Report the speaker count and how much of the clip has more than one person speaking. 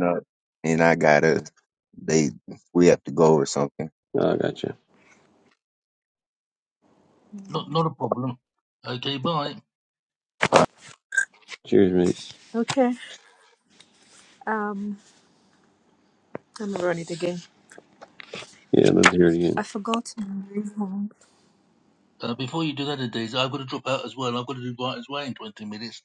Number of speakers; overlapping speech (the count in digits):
4, under 1%